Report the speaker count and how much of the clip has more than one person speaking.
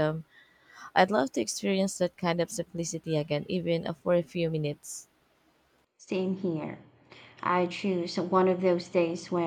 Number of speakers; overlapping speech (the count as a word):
two, no overlap